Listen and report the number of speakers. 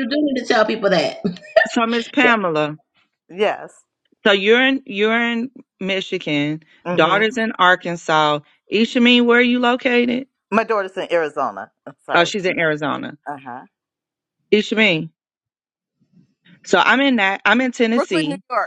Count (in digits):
3